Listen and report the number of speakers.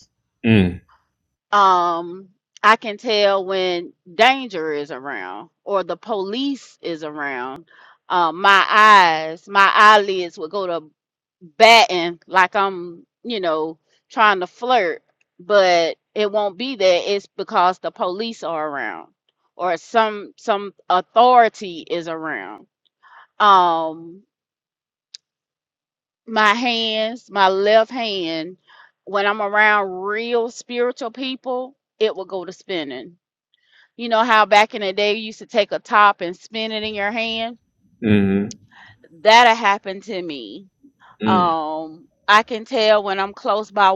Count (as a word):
two